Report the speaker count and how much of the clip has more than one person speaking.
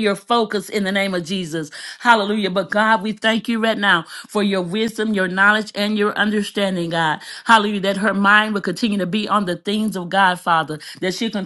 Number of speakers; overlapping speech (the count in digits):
1, no overlap